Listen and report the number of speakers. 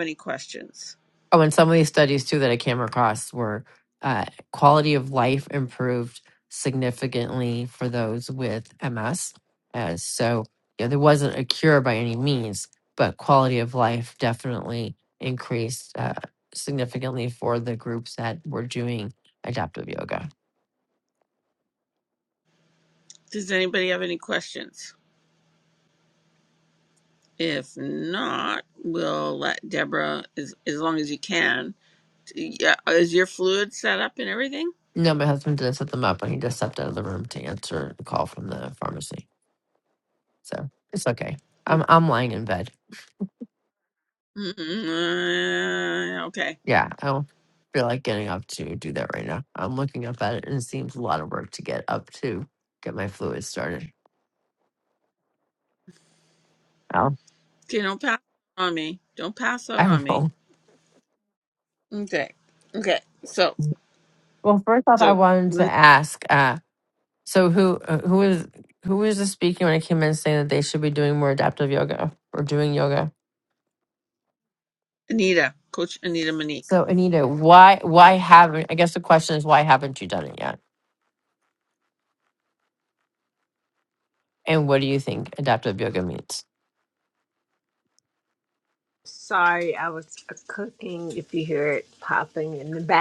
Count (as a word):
three